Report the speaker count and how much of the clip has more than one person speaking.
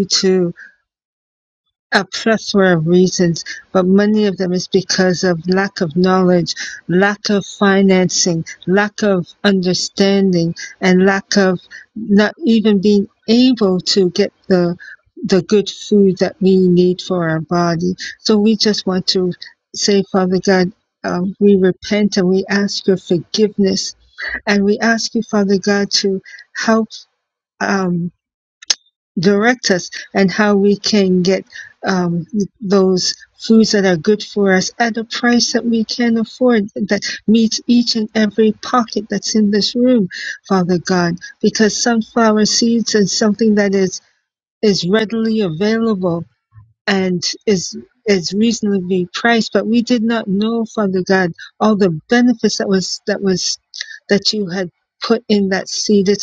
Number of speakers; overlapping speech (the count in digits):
1, no overlap